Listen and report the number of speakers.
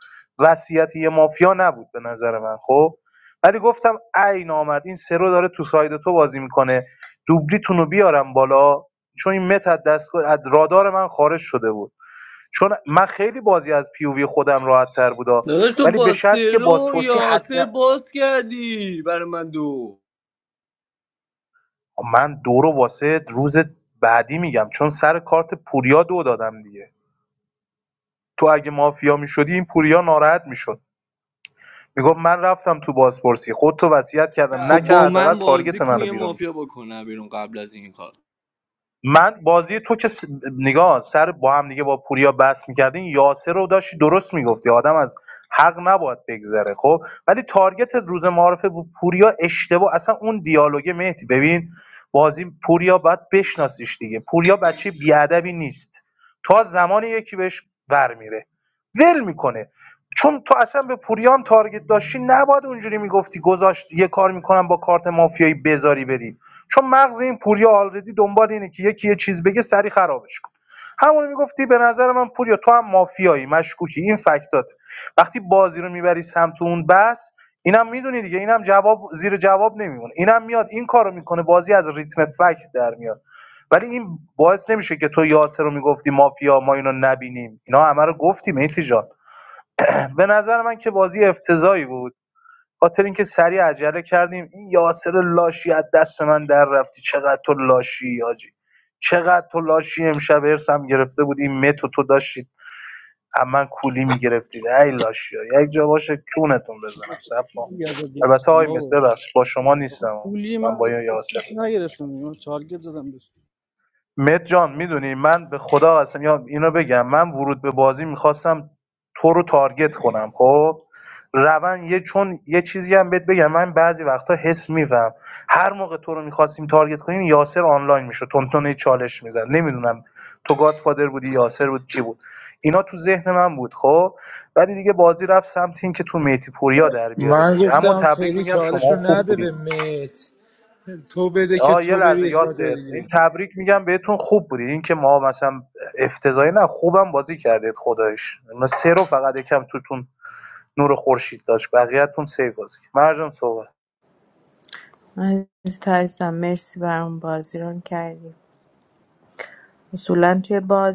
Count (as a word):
five